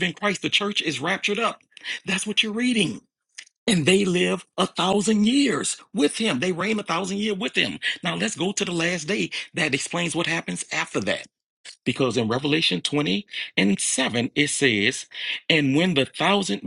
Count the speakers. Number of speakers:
1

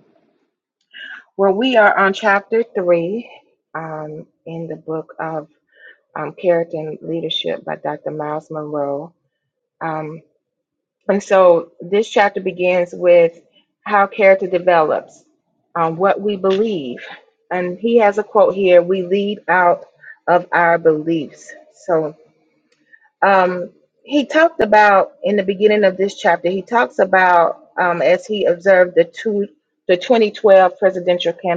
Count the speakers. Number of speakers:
1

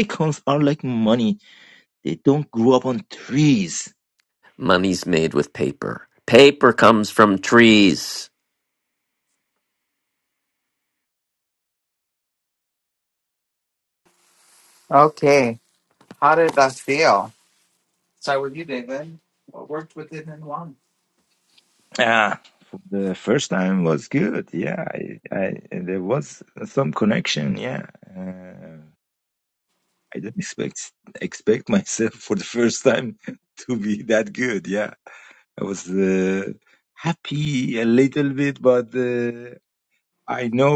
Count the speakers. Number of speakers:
3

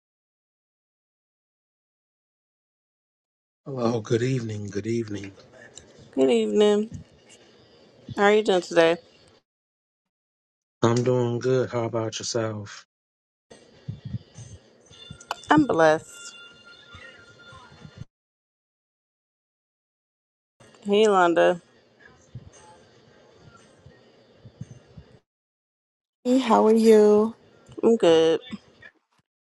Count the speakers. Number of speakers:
3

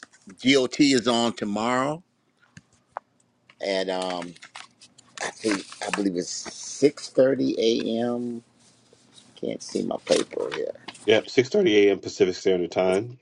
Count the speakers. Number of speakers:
2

